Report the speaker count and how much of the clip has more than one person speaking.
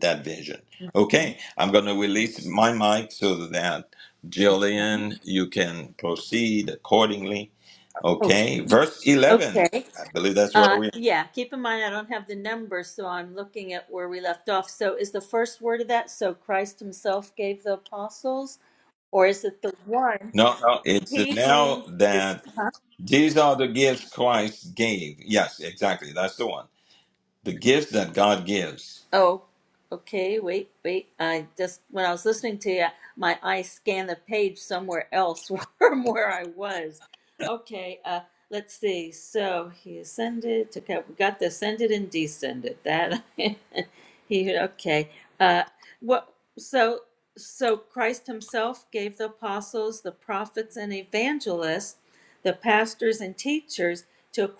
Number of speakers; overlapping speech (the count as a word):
two, about 4%